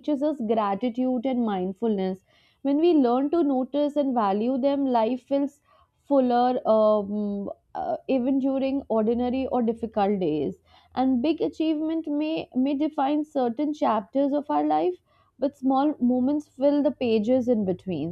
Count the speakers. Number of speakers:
one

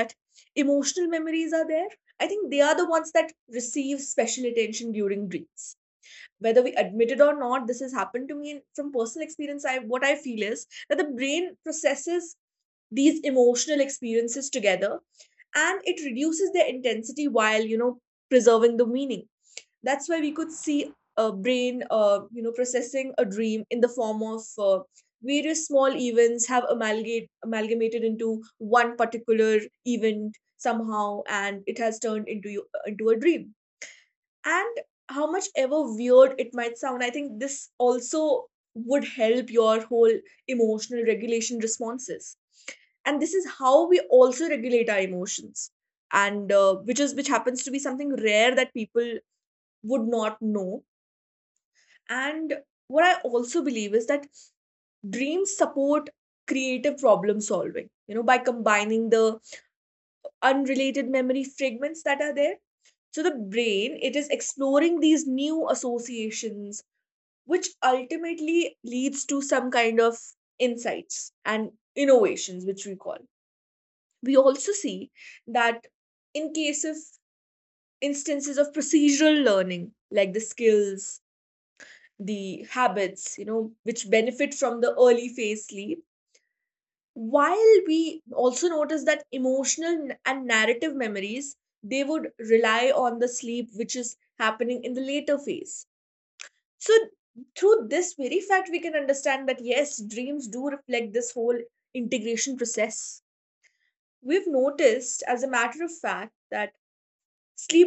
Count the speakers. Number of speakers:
one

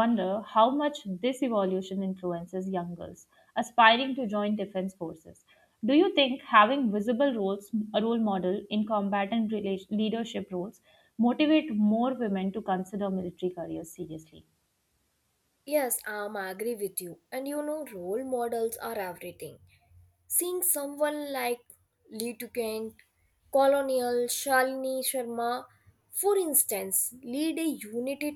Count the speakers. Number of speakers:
two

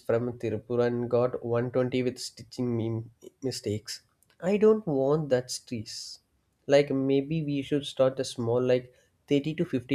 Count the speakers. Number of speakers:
one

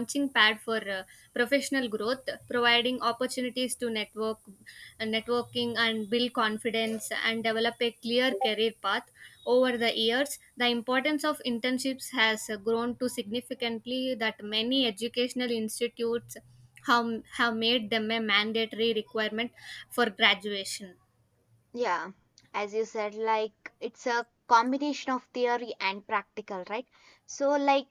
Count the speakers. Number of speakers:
two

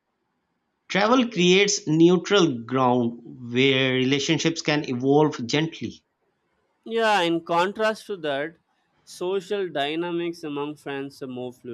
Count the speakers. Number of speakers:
two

